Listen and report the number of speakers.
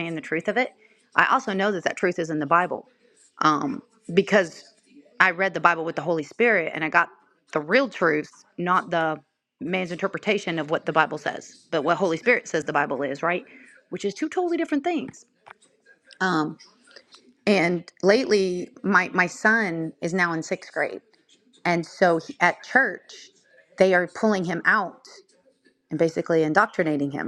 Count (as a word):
one